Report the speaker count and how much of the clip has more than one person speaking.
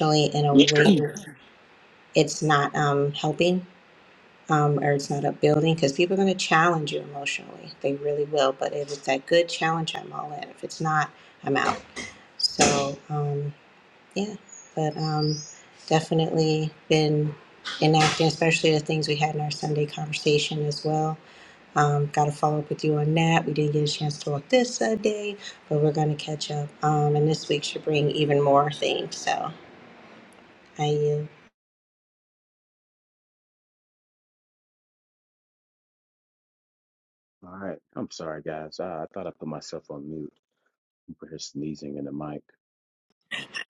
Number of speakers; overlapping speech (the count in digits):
2, under 1%